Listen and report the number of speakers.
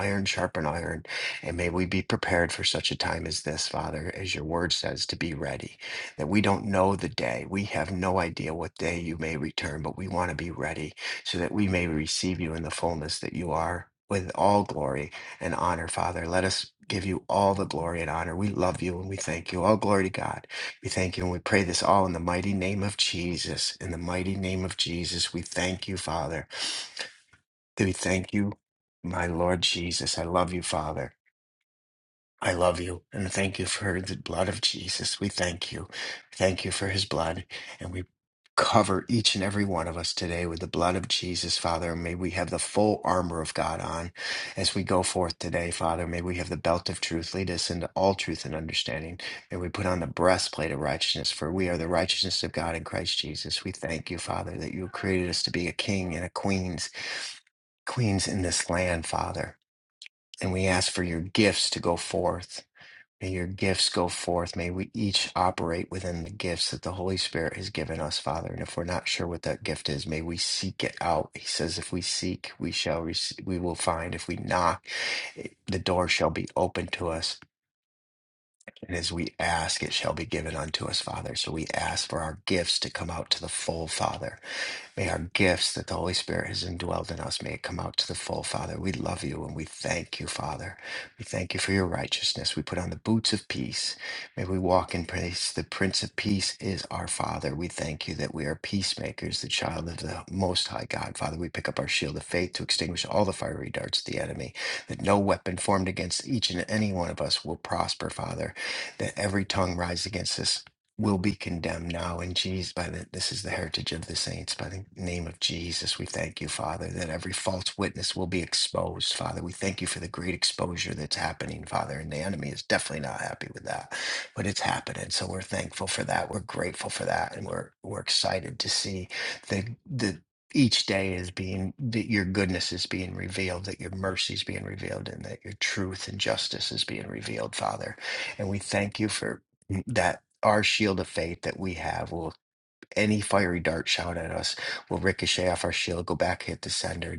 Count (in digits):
1